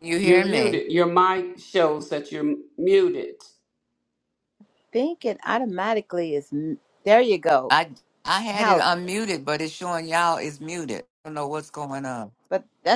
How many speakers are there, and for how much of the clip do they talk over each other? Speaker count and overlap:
3, about 7%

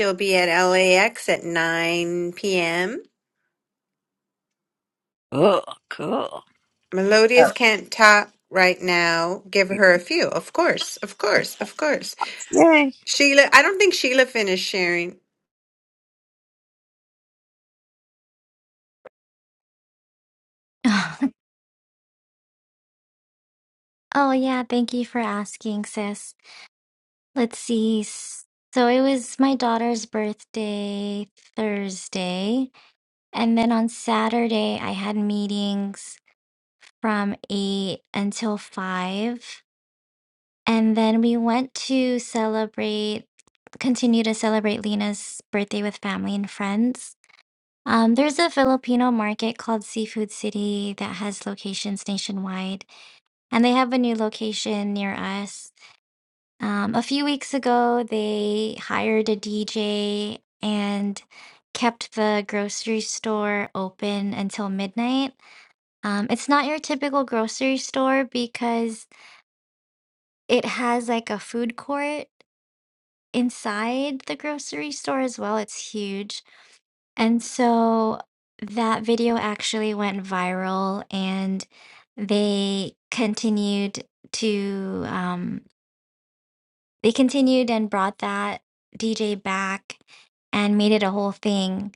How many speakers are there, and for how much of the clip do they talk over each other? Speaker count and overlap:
3, under 1%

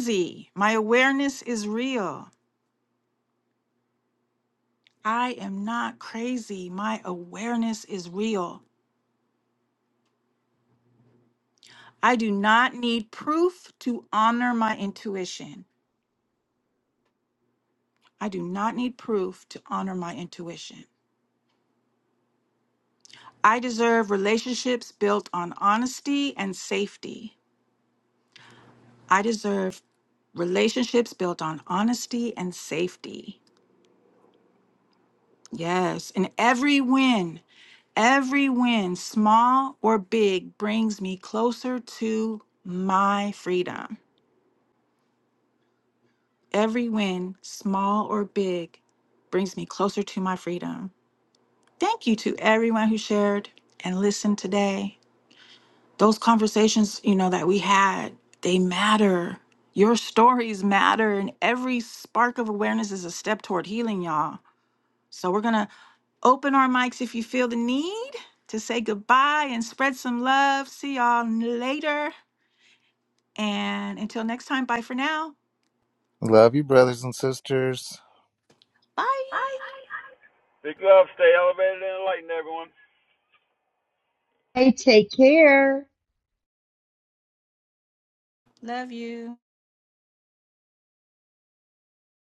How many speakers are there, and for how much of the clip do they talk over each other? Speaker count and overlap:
4, no overlap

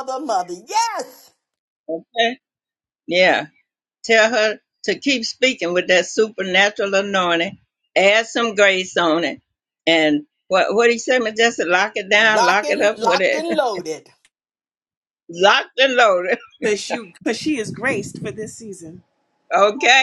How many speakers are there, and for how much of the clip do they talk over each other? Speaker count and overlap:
3, about 7%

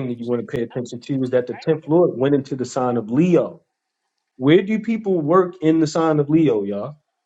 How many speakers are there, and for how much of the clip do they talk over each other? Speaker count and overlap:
1, no overlap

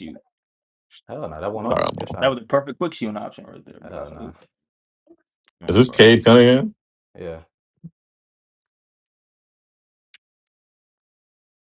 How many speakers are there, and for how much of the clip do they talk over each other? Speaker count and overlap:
3, about 13%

